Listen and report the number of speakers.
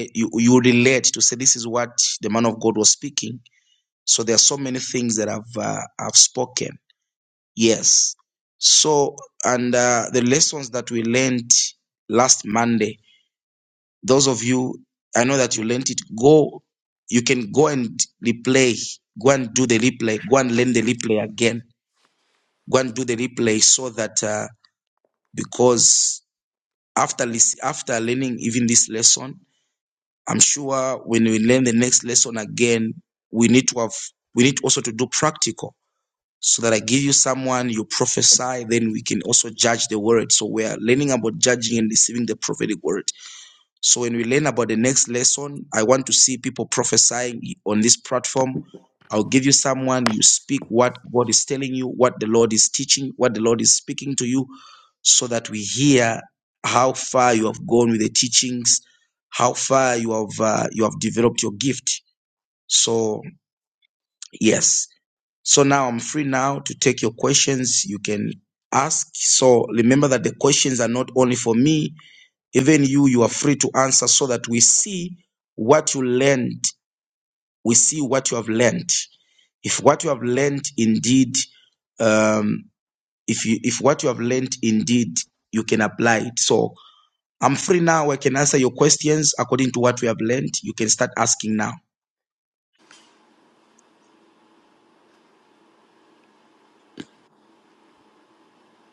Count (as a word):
one